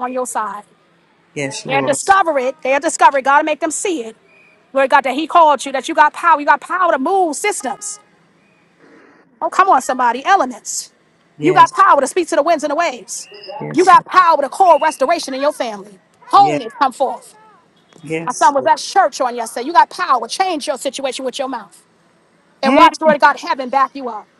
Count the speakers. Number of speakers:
2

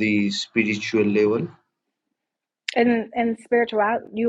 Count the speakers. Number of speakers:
2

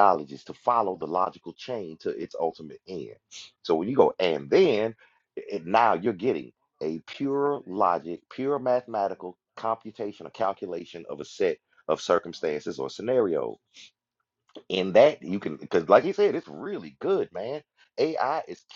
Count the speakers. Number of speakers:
1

